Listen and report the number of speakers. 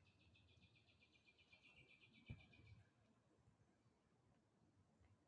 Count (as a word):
zero